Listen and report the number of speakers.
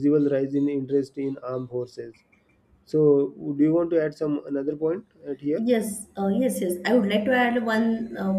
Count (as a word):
two